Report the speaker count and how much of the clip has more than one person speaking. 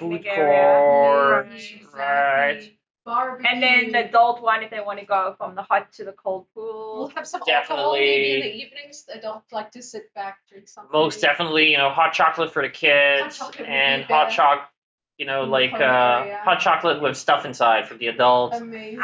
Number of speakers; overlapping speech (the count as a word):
three, about 38%